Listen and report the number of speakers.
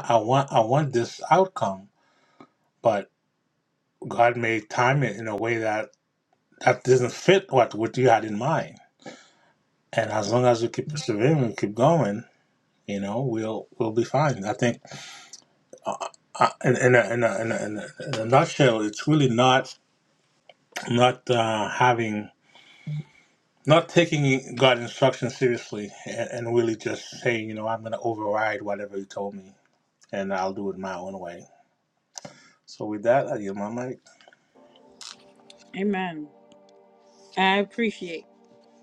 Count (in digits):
2